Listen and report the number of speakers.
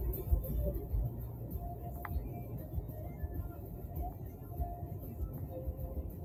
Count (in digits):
0